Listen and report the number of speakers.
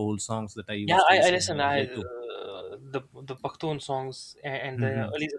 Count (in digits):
2